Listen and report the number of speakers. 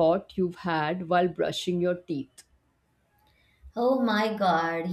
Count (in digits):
2